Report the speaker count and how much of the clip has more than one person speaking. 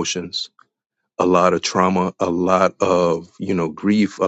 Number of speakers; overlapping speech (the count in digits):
1, no overlap